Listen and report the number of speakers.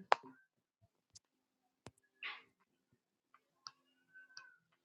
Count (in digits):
0